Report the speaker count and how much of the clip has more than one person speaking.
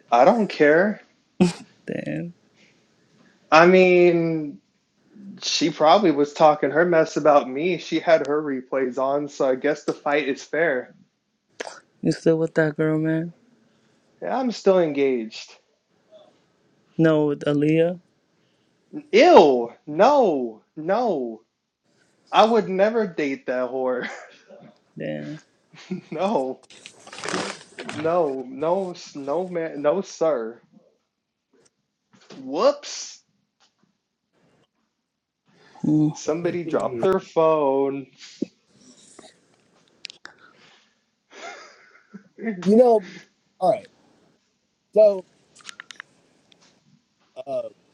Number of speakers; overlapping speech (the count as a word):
three, no overlap